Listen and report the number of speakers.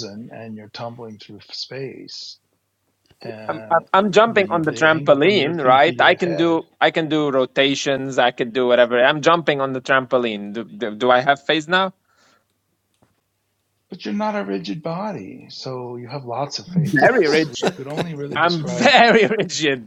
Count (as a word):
two